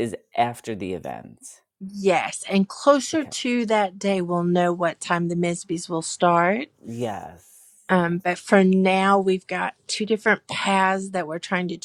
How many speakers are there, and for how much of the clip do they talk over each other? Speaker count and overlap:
two, about 2%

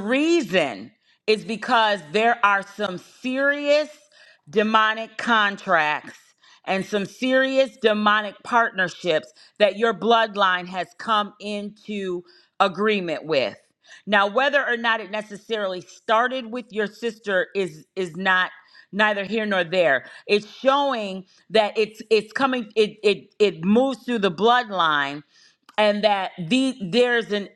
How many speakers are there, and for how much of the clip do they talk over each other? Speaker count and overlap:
one, no overlap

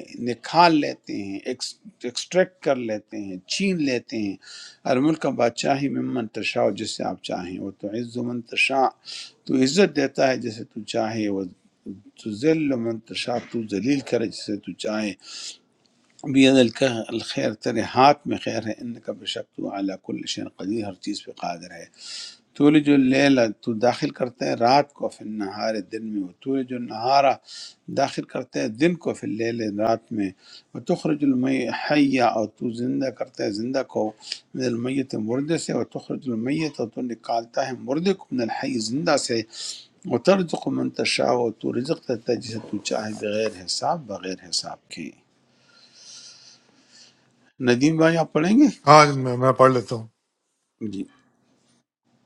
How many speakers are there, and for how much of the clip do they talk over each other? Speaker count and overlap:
two, no overlap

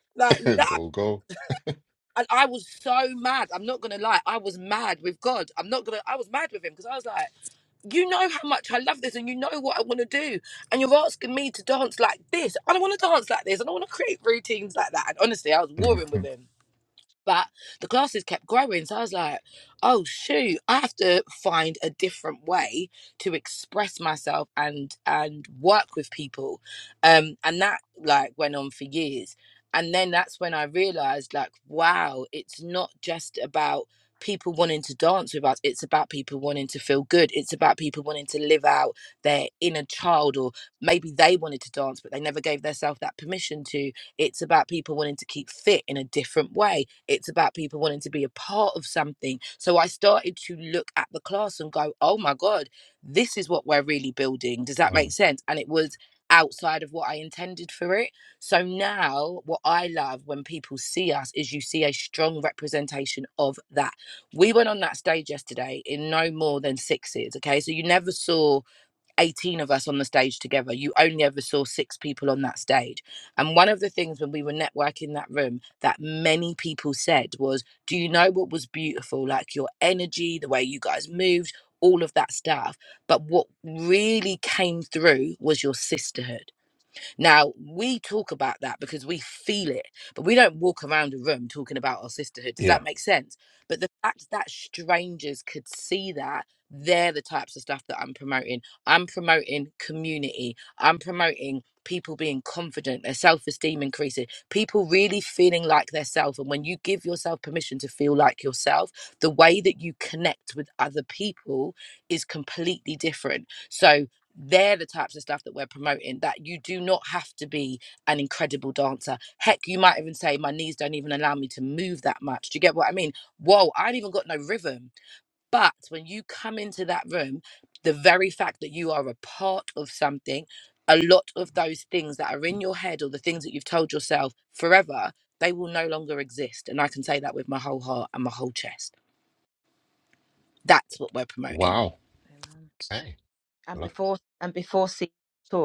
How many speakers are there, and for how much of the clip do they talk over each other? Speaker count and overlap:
three, about 1%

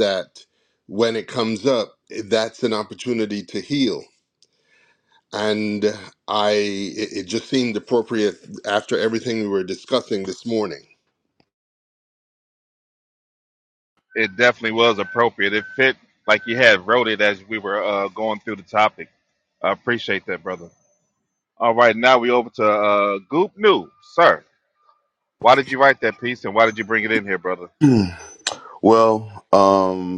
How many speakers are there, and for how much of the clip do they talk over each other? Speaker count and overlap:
three, no overlap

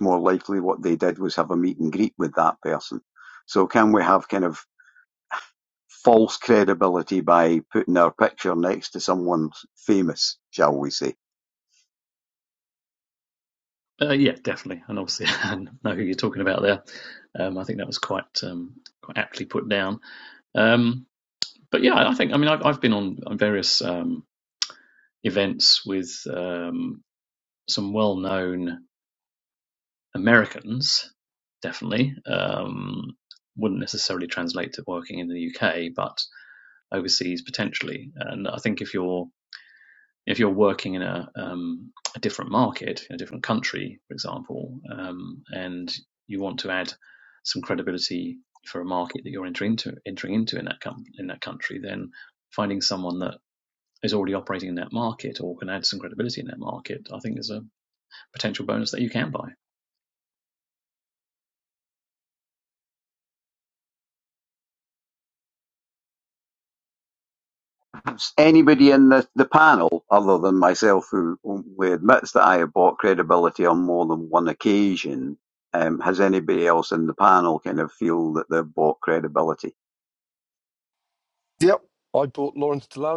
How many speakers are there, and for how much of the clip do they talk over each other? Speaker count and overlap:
three, no overlap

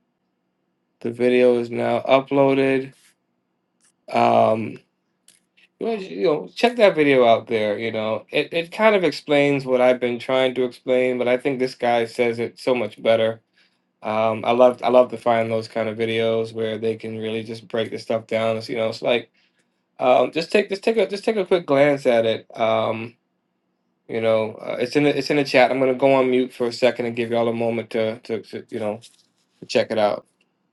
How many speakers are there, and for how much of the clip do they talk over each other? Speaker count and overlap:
one, no overlap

